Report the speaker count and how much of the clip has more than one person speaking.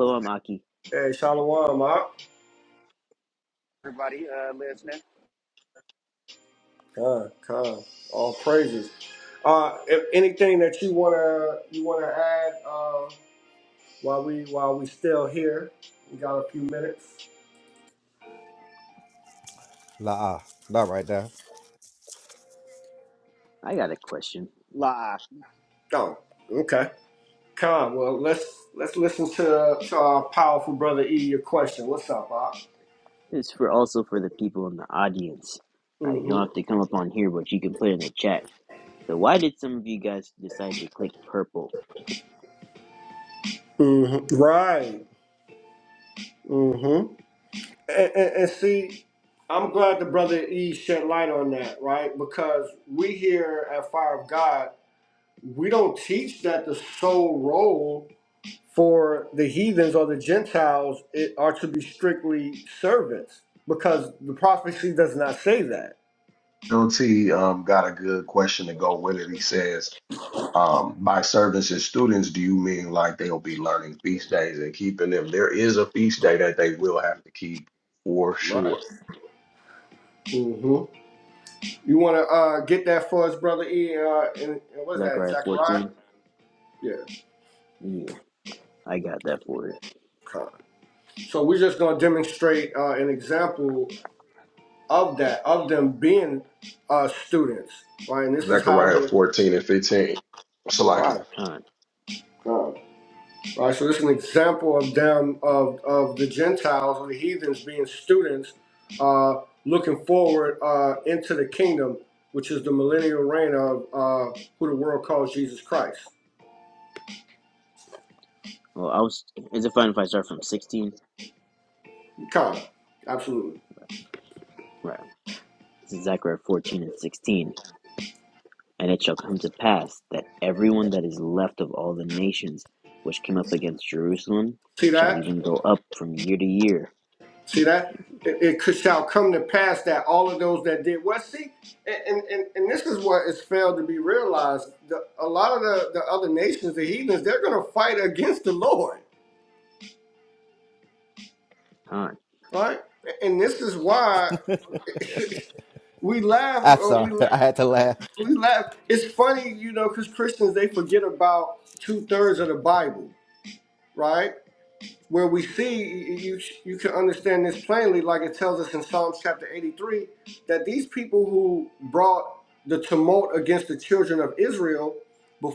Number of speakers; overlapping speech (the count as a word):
five, about 2%